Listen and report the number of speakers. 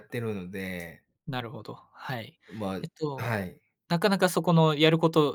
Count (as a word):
two